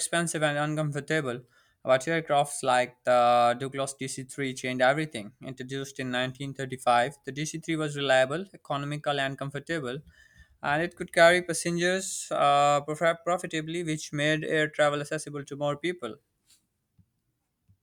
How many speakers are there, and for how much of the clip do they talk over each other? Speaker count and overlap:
one, no overlap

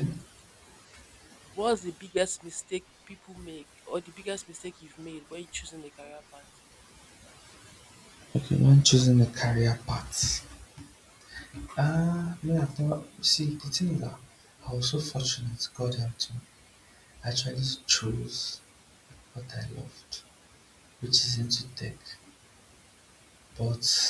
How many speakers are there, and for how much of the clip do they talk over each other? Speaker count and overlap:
two, no overlap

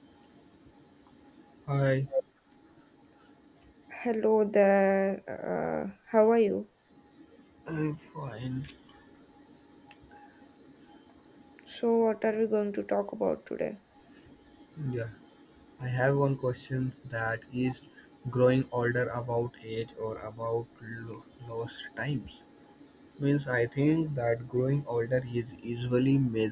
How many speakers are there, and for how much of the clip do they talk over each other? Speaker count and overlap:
two, no overlap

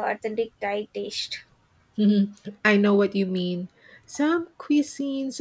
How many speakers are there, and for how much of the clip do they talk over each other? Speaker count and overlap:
two, no overlap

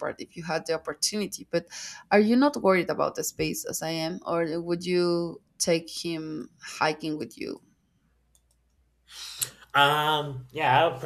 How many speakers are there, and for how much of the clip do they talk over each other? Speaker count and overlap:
two, no overlap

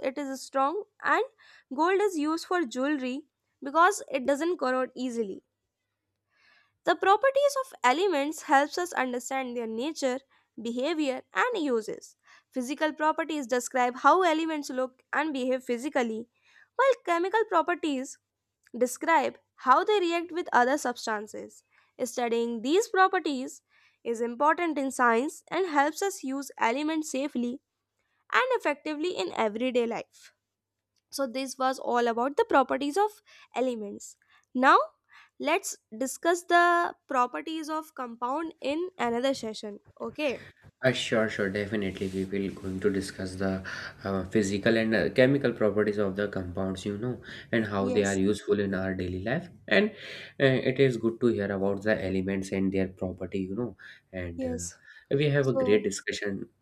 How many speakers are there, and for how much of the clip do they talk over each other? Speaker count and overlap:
two, about 2%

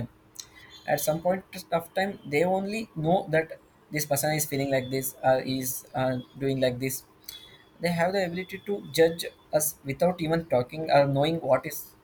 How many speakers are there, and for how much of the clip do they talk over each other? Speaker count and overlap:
one, no overlap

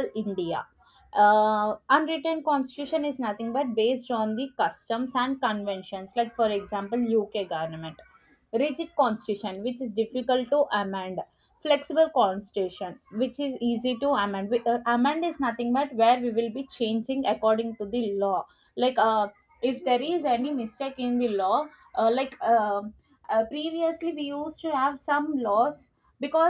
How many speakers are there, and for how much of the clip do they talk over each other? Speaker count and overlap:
one, no overlap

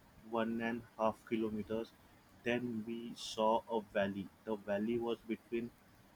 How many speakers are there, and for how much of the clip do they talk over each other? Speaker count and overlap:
one, no overlap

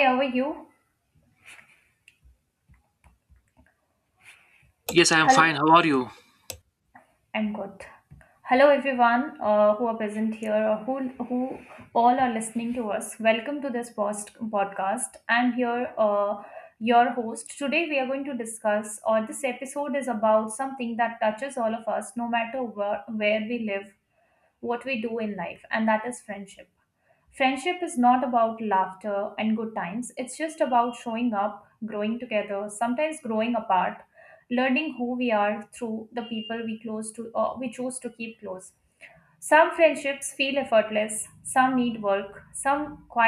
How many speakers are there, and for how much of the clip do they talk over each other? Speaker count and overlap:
two, about 1%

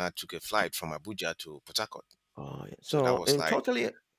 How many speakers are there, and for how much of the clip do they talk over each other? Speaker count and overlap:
two, about 17%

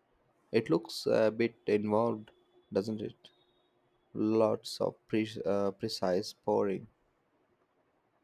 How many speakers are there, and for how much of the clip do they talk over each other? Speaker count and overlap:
one, no overlap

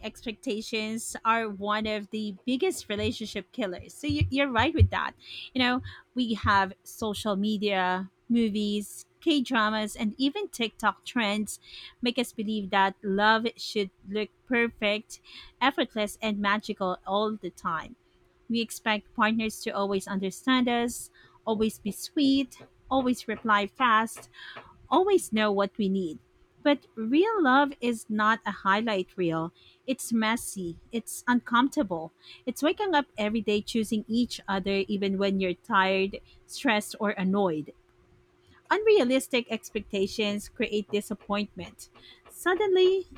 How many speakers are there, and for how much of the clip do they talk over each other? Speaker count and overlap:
one, no overlap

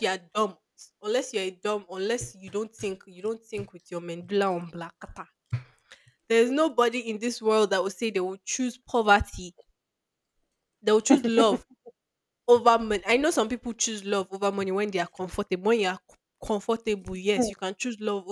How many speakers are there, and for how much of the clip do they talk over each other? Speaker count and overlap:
one, no overlap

